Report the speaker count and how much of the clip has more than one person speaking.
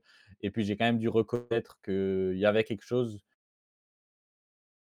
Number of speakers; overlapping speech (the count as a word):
one, no overlap